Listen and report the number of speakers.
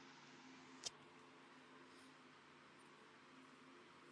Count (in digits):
0